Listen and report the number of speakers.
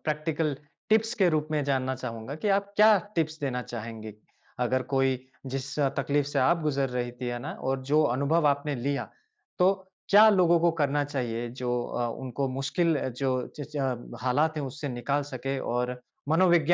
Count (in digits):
1